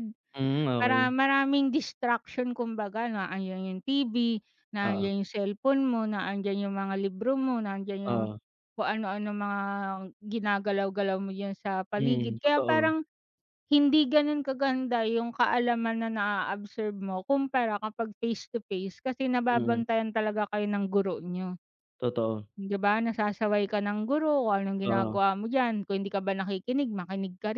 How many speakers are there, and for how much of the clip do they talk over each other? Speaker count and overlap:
two, about 9%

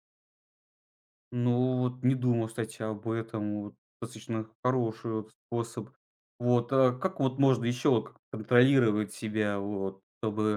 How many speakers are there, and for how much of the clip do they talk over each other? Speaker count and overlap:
one, no overlap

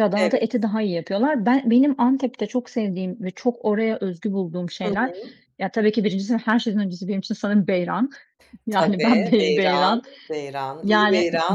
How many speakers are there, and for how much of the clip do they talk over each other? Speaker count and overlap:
two, about 22%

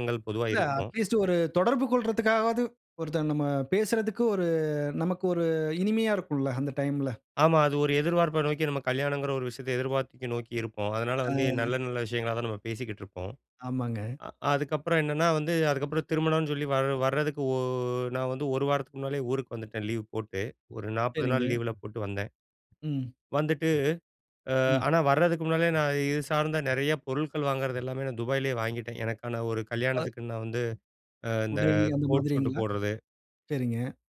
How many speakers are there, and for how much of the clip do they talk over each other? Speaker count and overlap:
two, about 8%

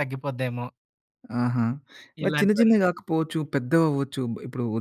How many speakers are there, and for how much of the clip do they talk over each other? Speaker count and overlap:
two, about 12%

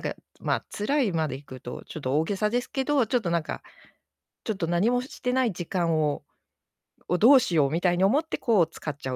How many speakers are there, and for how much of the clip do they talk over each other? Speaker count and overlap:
one, no overlap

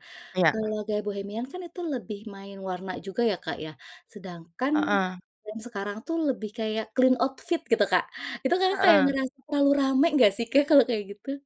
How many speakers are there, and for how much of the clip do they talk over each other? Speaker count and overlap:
two, about 4%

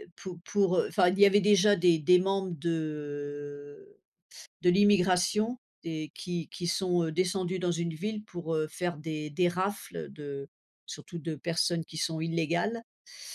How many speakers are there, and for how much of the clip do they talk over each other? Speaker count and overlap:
one, no overlap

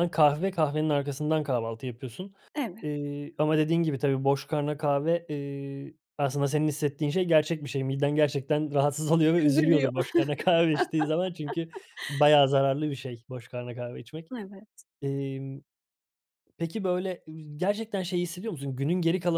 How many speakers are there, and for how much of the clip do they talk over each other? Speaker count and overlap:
two, about 3%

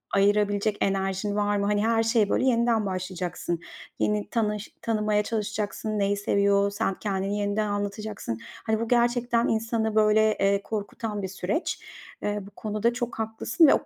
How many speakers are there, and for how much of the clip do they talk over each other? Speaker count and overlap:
one, no overlap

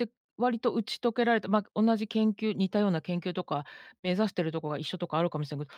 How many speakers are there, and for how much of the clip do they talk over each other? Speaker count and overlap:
one, no overlap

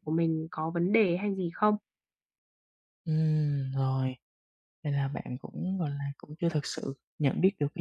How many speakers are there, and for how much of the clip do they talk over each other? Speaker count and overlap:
two, no overlap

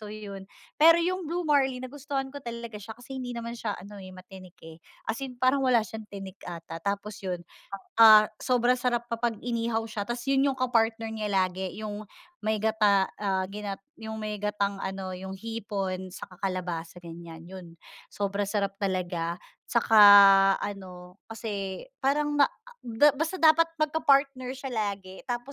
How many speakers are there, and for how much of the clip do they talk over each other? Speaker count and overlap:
one, no overlap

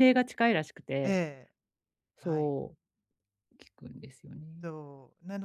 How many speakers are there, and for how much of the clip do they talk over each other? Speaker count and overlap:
two, about 6%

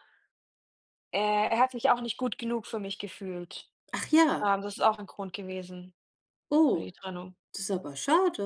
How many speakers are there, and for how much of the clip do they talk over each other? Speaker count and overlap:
two, about 2%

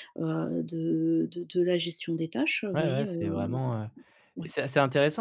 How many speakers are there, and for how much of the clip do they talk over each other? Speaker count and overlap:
two, about 19%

